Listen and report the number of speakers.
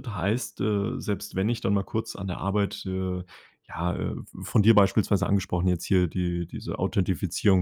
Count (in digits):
1